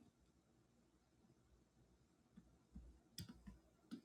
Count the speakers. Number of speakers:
zero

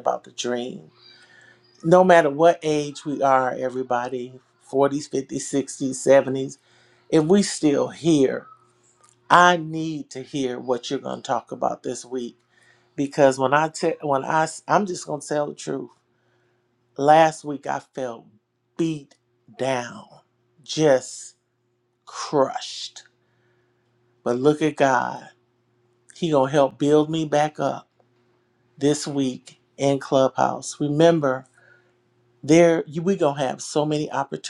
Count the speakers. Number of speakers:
one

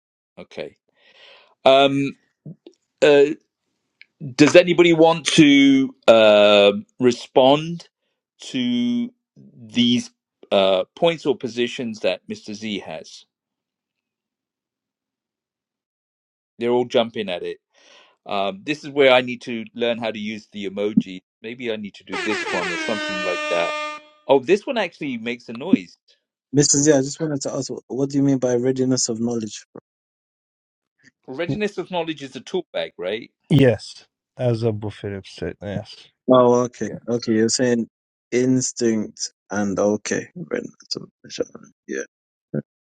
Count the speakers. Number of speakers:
three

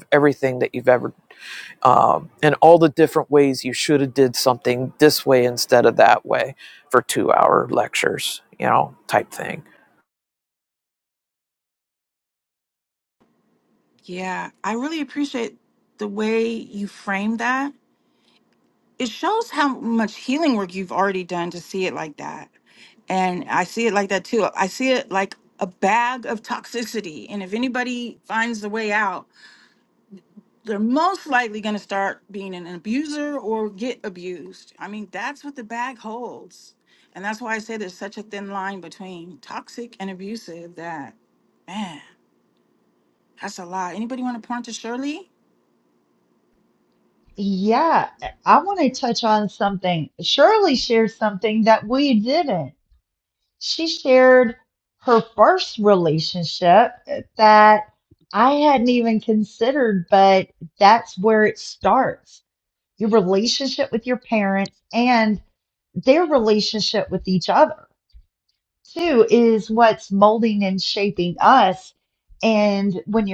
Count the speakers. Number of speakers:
three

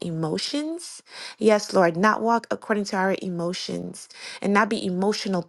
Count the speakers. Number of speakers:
one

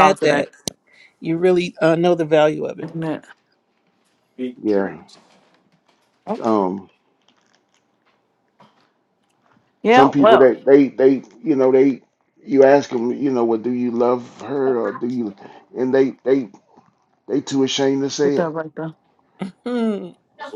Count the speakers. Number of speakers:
three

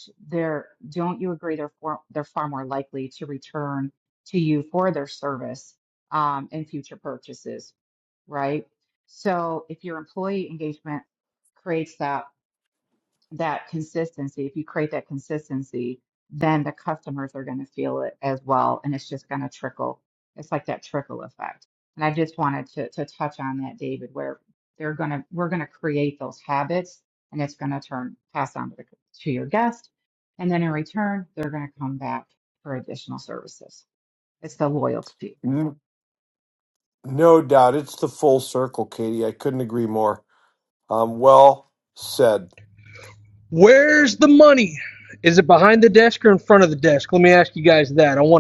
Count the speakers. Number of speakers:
three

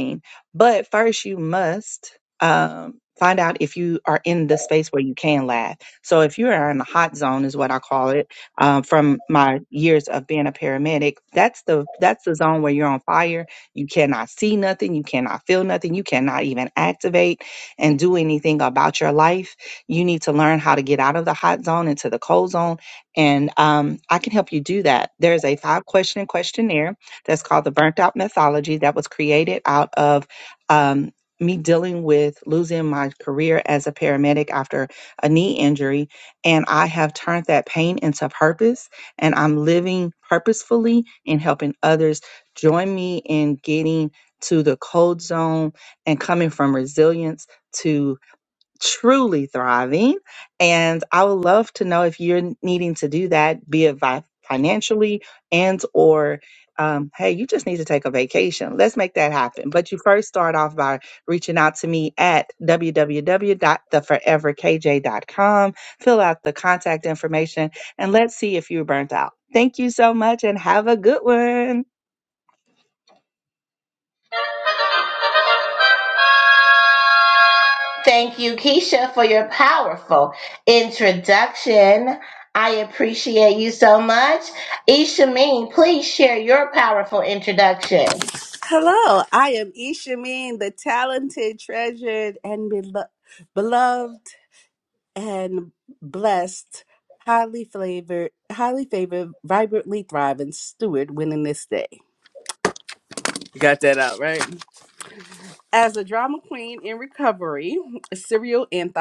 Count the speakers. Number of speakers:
three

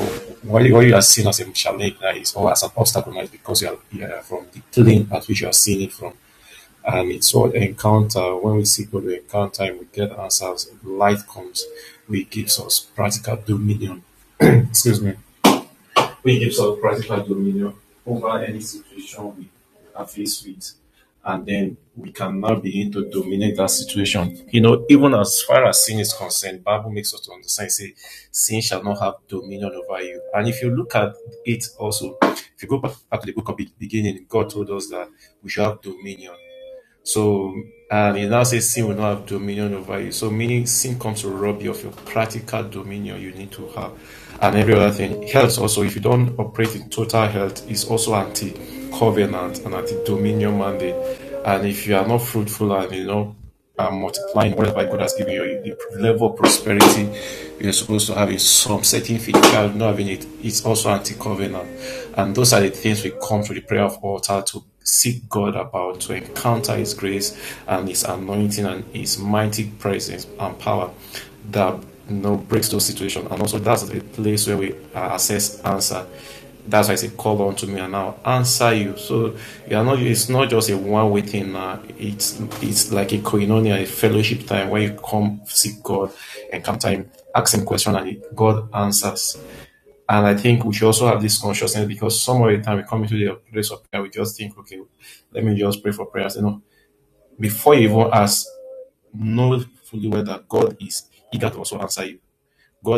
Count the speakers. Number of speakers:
one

